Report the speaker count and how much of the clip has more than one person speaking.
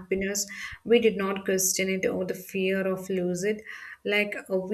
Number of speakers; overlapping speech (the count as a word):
one, no overlap